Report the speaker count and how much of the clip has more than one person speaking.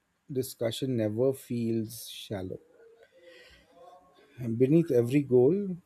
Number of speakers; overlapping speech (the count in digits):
1, no overlap